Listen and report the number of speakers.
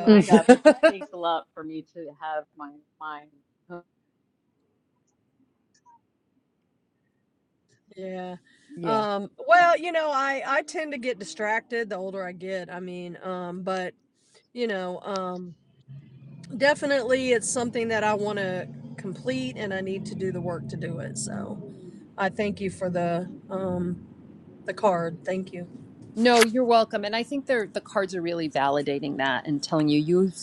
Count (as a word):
three